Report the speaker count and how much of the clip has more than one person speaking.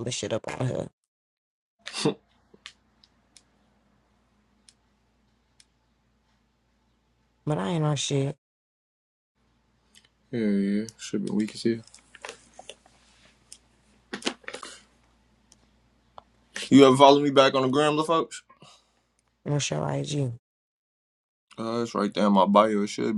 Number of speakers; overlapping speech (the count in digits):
2, no overlap